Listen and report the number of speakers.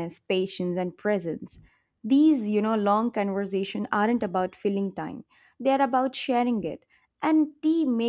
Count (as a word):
one